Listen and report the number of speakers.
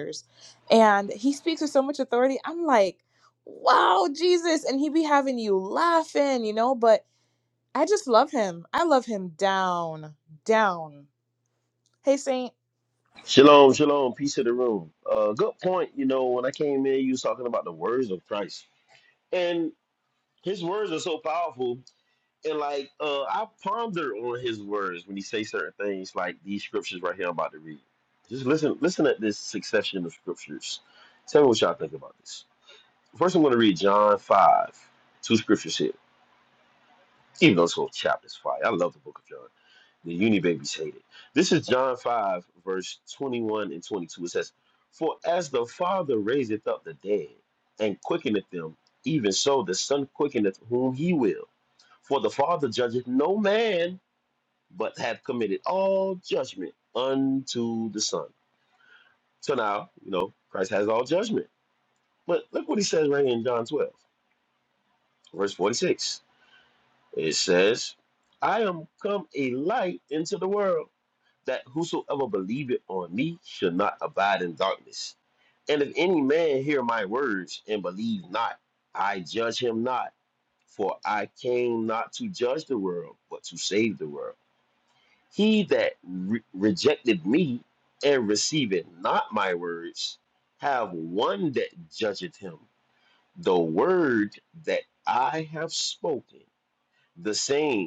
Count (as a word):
two